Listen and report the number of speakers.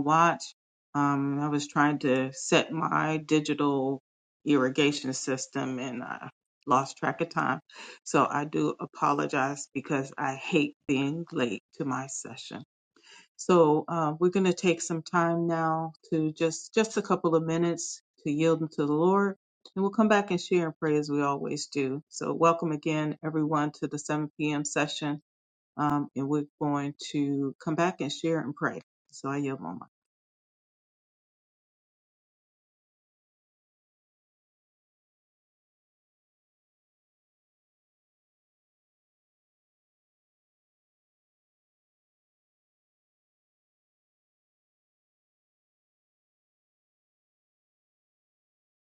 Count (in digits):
1